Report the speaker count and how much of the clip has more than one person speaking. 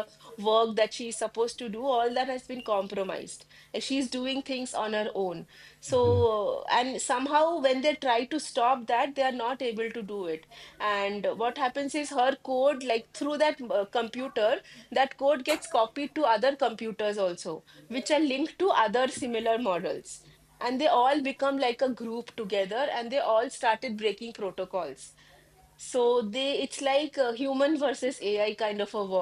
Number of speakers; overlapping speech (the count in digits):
1, no overlap